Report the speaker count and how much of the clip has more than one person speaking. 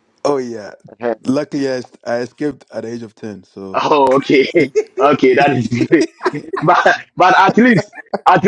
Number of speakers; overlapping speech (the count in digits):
2, under 1%